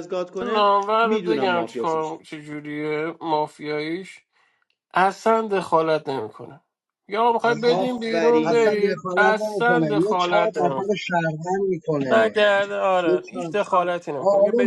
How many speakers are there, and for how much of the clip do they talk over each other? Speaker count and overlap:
3, about 41%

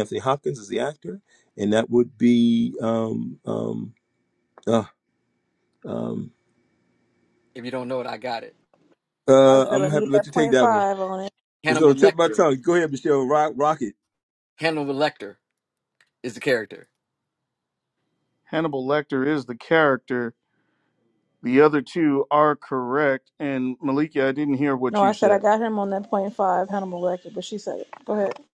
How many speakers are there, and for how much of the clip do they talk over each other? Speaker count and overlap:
4, about 9%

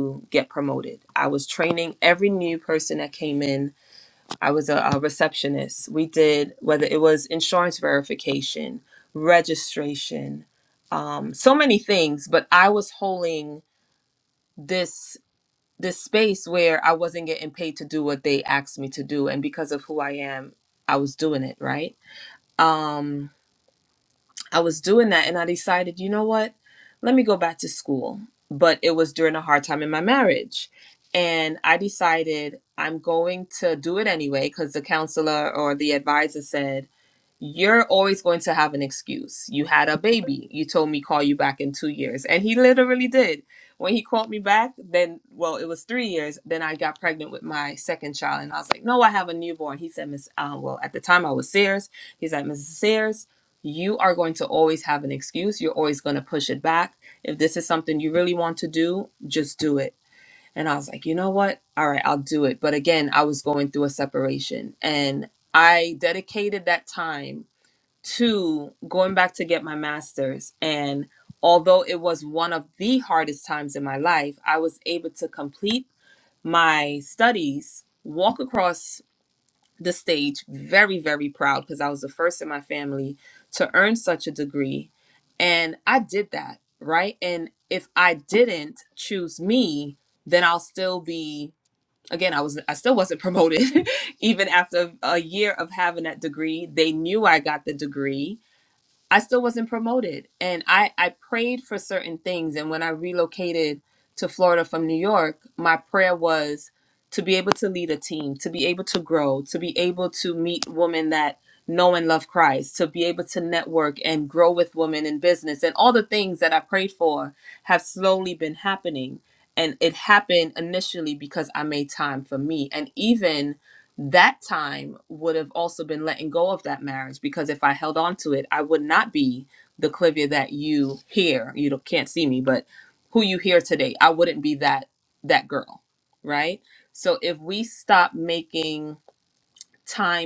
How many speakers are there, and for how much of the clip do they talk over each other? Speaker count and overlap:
1, no overlap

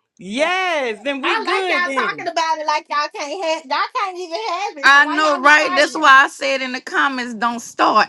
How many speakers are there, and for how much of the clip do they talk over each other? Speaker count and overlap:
3, about 27%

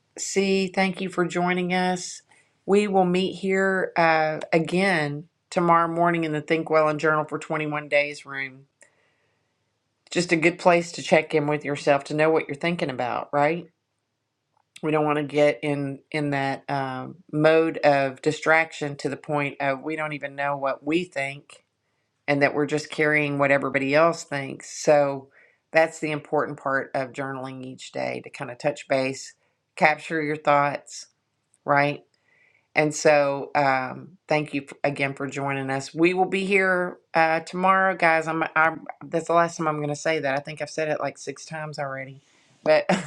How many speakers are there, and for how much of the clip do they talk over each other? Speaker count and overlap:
1, no overlap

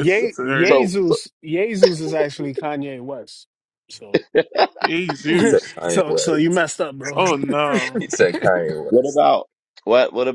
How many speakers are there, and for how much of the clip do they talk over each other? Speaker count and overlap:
4, about 16%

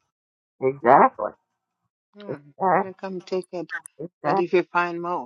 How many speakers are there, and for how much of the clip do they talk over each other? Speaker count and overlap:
2, about 7%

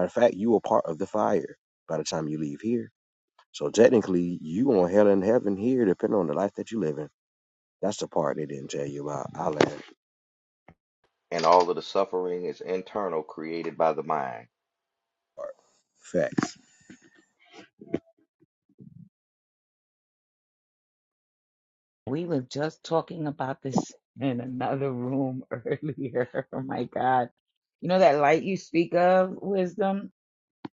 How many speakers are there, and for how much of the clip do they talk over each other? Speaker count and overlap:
3, no overlap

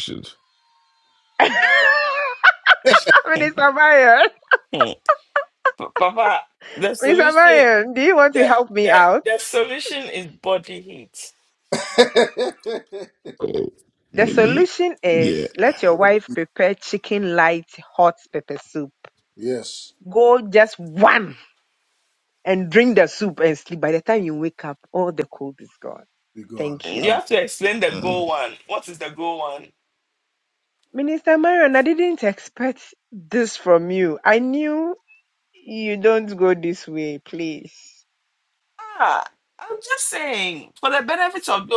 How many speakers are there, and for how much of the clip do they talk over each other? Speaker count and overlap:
4, about 7%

